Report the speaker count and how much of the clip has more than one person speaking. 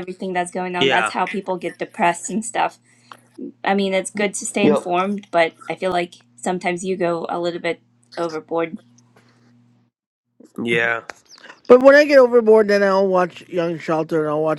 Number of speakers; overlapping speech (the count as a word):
three, about 4%